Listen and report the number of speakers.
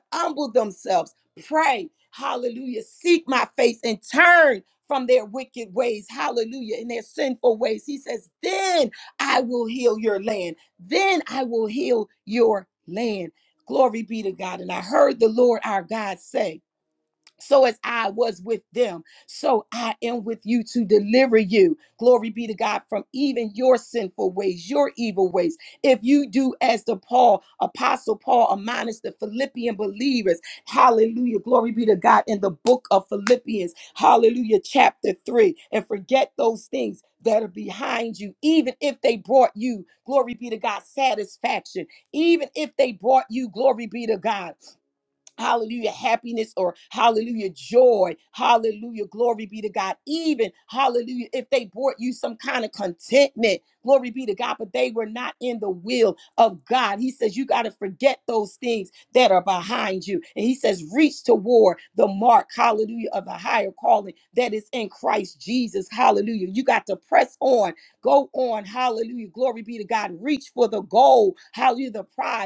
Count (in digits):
1